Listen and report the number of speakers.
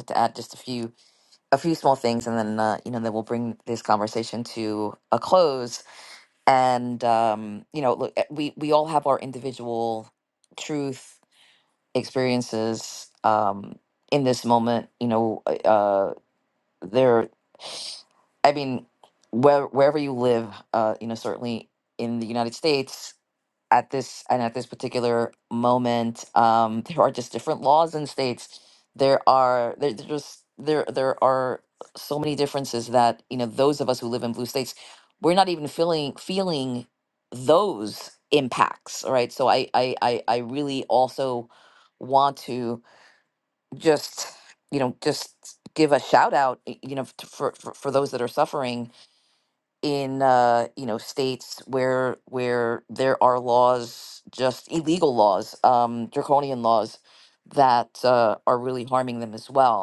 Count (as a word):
one